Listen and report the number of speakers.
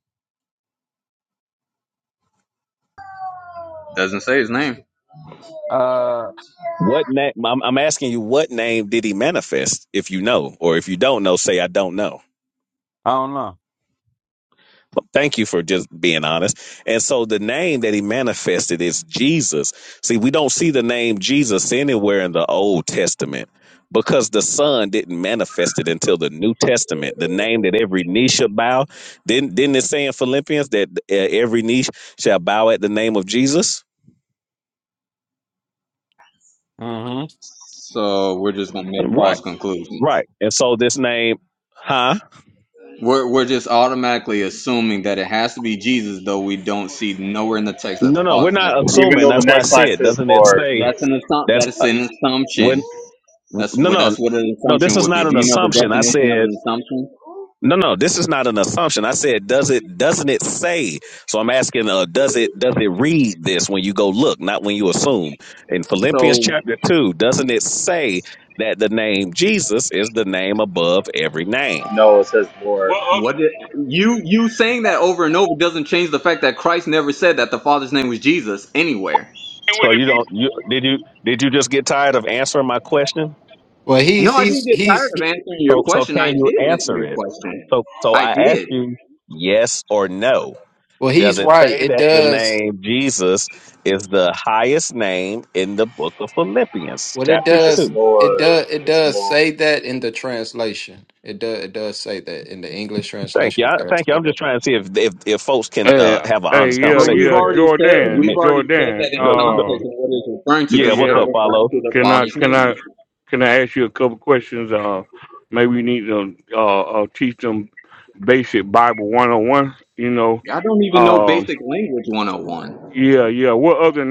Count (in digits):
6